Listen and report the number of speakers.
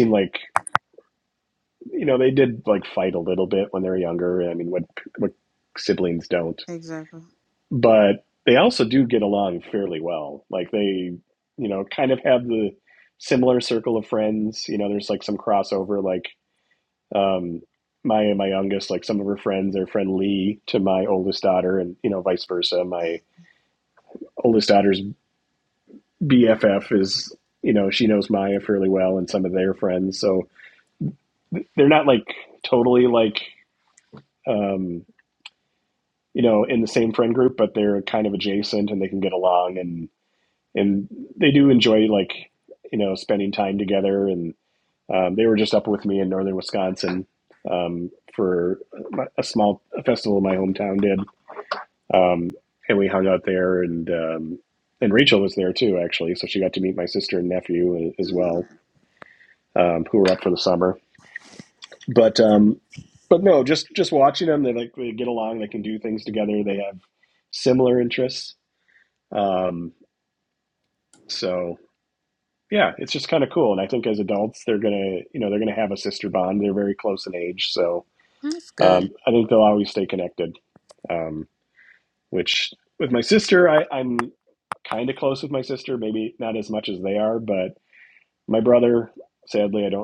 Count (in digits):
2